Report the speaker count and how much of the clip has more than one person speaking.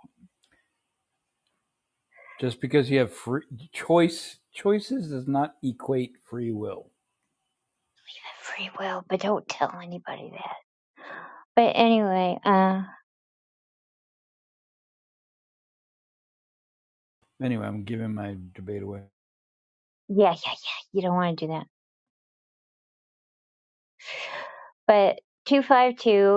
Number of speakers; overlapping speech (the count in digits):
2, no overlap